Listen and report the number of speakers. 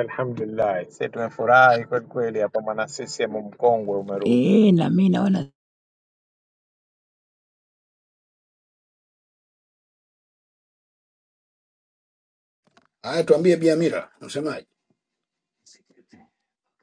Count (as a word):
three